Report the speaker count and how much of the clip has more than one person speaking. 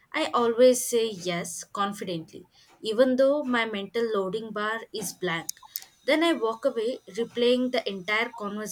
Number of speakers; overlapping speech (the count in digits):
1, no overlap